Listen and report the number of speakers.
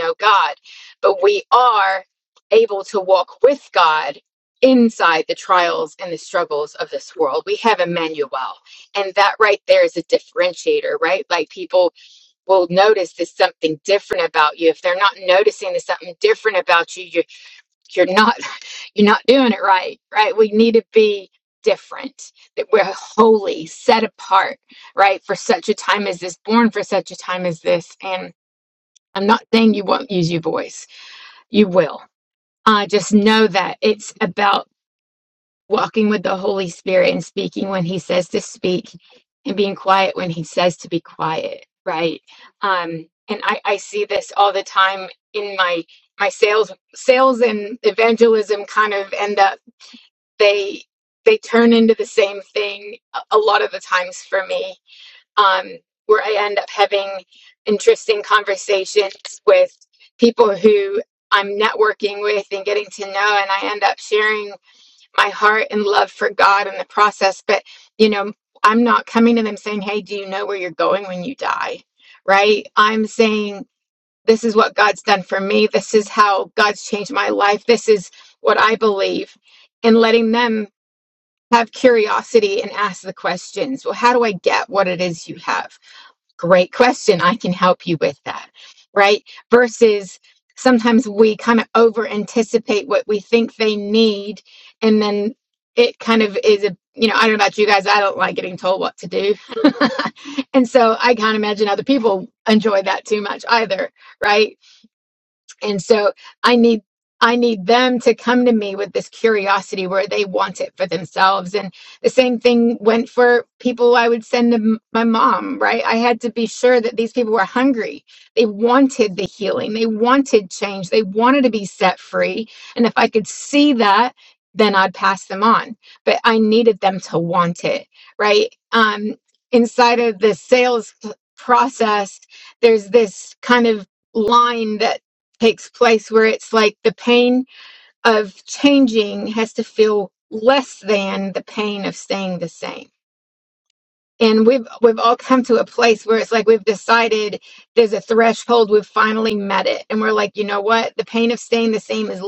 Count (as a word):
one